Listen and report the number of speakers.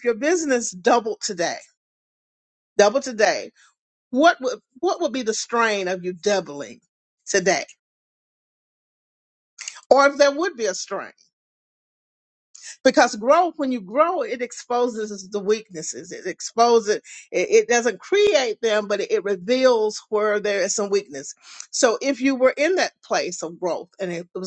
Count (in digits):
1